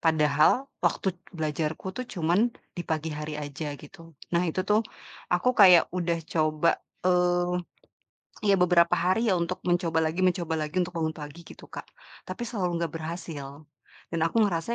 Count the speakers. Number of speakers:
one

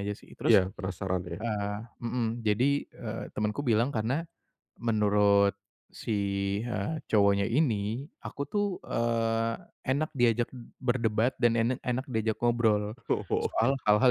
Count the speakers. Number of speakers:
two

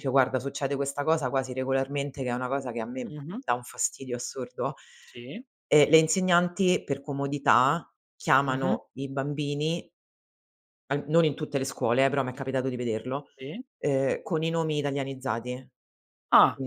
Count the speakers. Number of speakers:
two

